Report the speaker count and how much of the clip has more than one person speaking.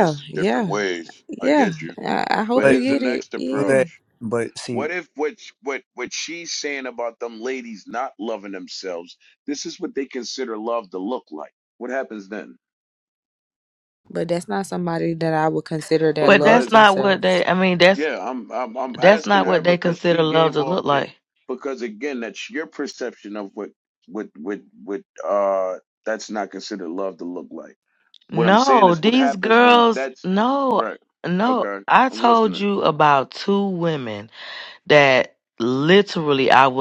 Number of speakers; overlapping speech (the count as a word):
four, about 25%